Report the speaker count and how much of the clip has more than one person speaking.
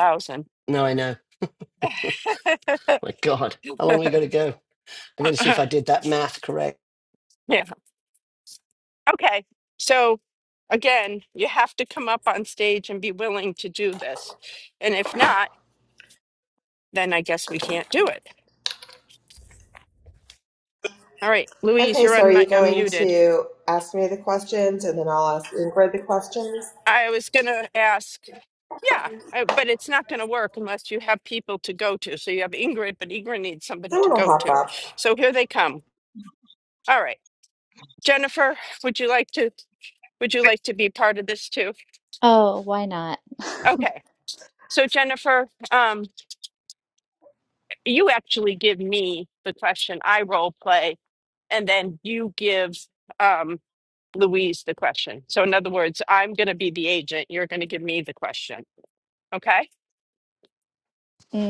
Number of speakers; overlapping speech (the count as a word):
four, about 3%